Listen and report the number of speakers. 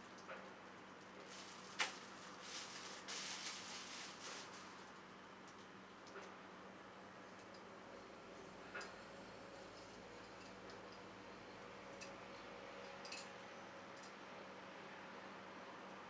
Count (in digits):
0